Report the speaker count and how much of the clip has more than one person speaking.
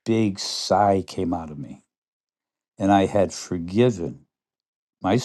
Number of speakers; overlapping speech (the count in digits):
1, no overlap